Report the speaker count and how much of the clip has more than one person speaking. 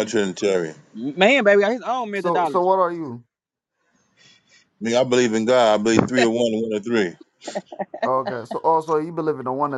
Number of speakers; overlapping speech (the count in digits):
3, about 3%